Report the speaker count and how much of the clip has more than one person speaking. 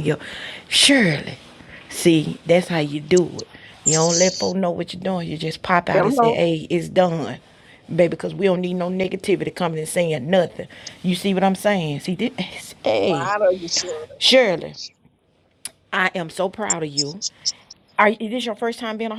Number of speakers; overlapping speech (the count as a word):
two, about 4%